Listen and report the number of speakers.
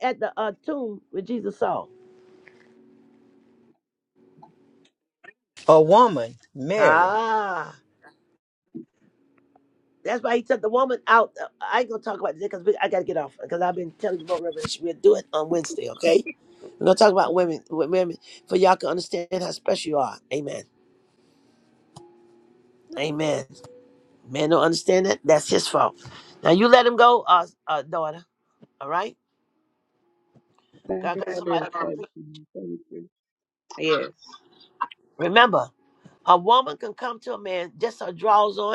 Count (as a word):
three